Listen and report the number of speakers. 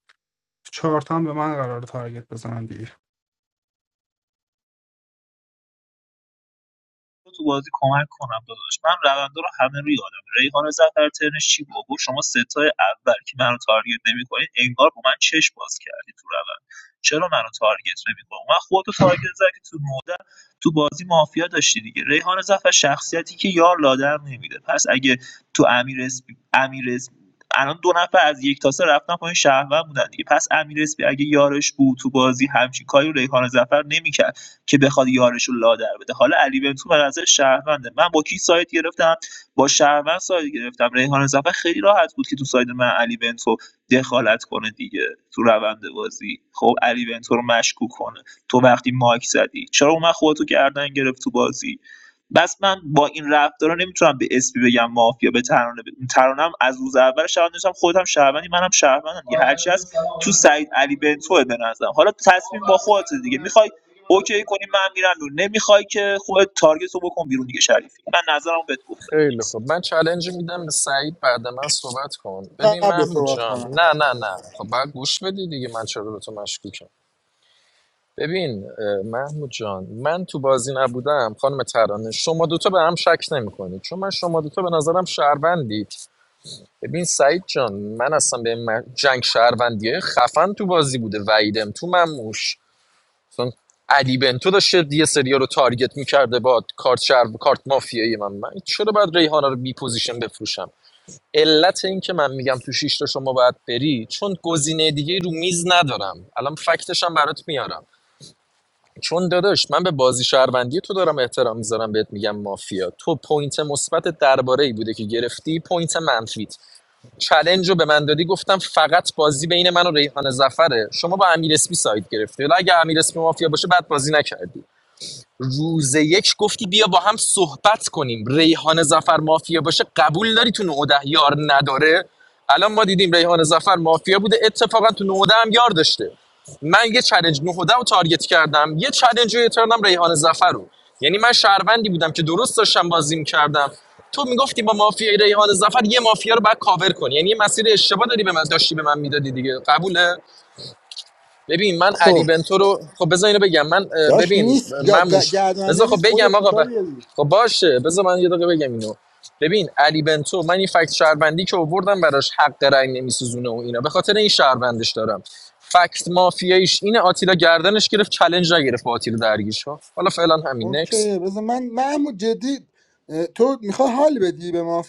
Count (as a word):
four